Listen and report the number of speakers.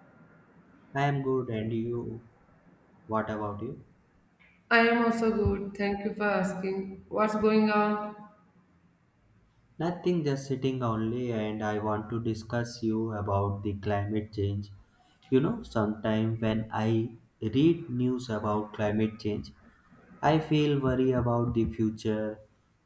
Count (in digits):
2